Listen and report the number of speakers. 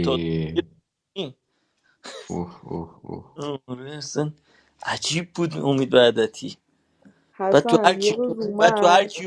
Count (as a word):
three